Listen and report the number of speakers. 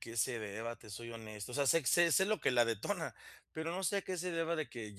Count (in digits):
1